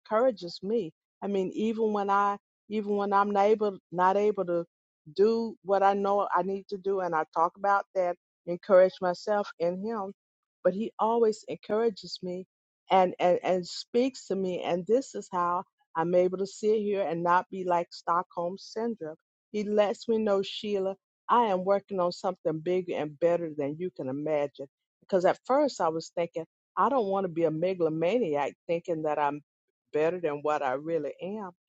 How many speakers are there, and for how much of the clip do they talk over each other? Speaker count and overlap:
one, no overlap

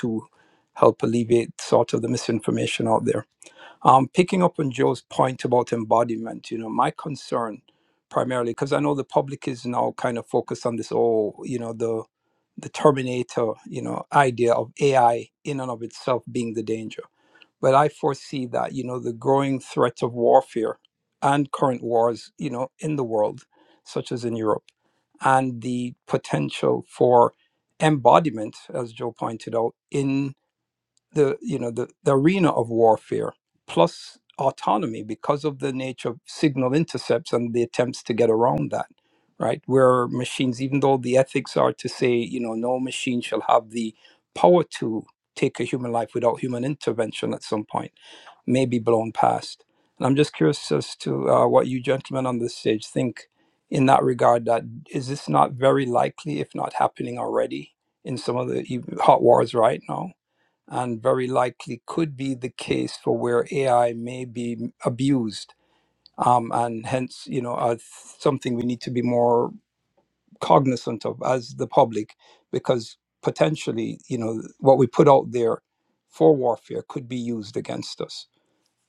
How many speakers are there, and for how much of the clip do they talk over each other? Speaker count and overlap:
one, no overlap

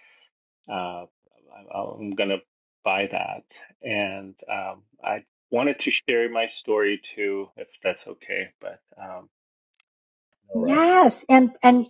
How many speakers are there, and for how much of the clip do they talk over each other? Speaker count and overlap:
two, about 3%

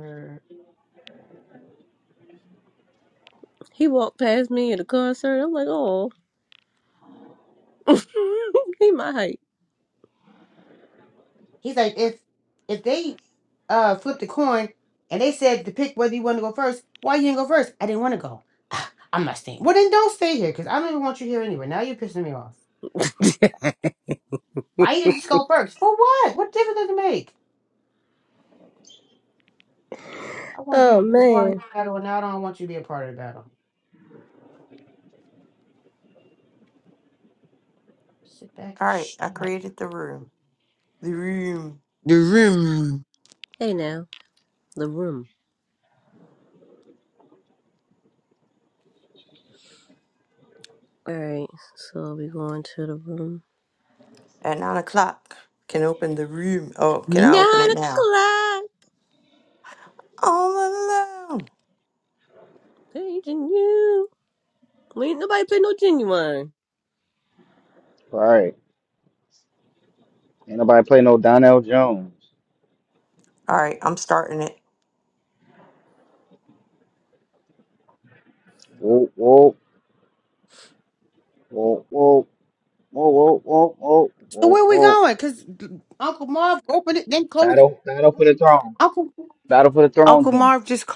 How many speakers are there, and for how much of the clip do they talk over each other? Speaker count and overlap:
four, about 4%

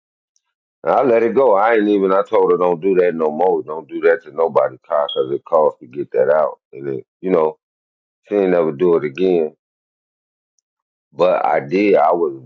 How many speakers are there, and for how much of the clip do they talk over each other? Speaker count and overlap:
one, no overlap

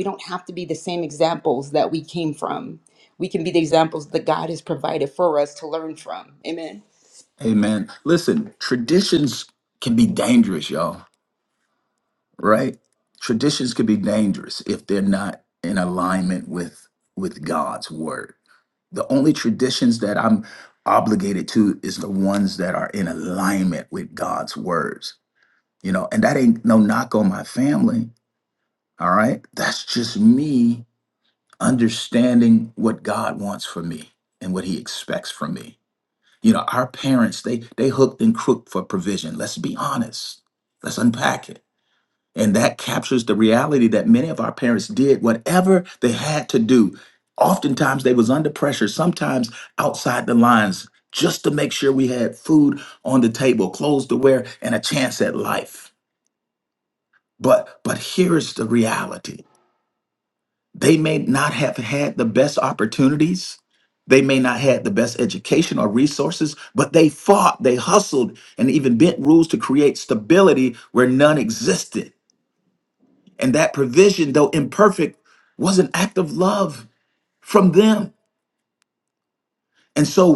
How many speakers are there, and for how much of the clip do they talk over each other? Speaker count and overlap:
two, no overlap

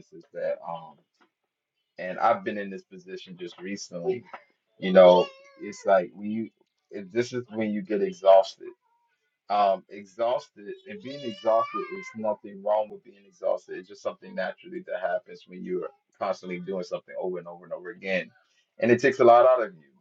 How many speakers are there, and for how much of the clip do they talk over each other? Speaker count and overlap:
one, no overlap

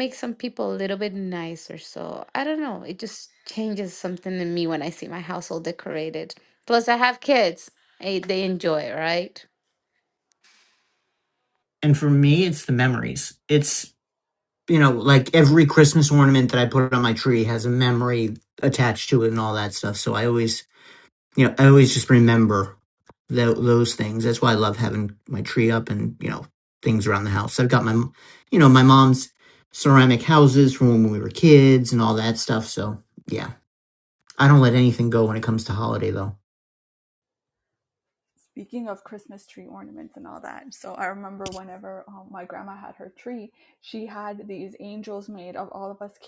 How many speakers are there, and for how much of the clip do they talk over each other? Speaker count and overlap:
three, no overlap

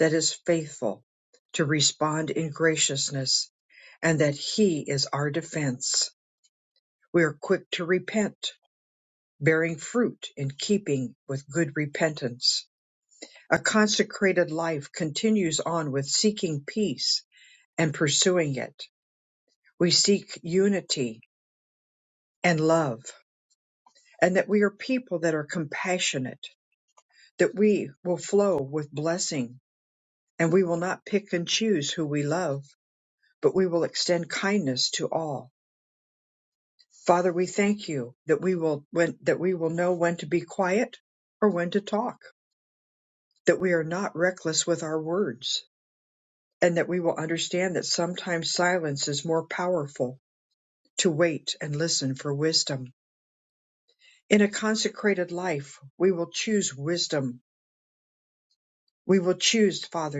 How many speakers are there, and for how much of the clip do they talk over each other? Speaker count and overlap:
one, no overlap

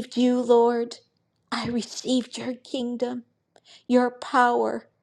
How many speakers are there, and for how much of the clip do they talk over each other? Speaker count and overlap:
one, no overlap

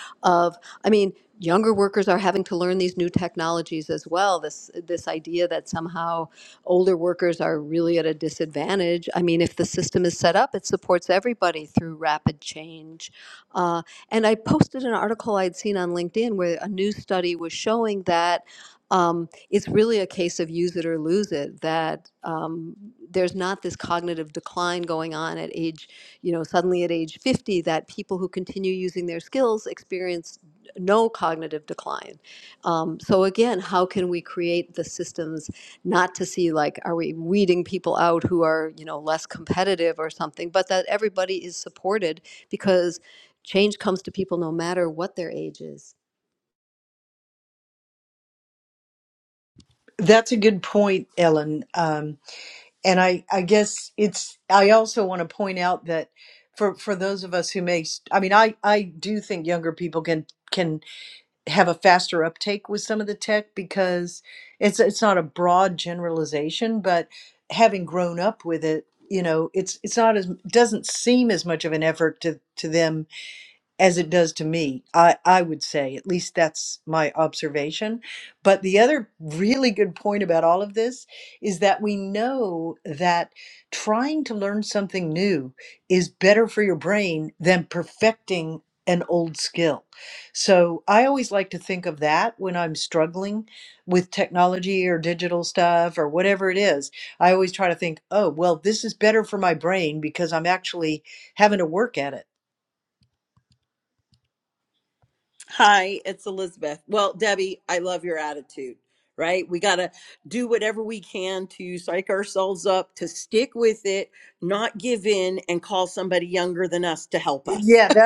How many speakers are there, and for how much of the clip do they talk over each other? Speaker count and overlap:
three, under 1%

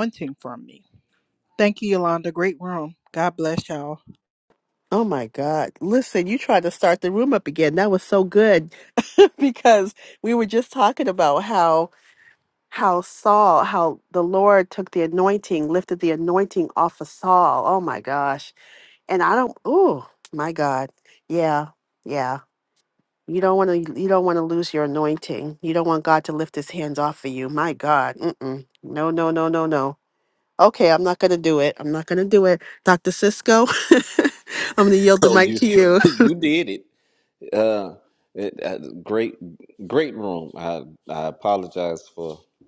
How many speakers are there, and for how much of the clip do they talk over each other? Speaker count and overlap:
three, about 1%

